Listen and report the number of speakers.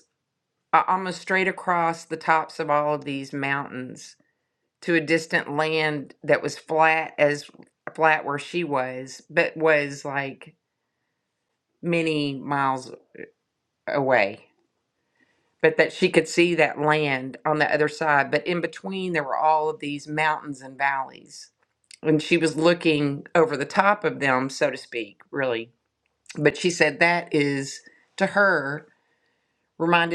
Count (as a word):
one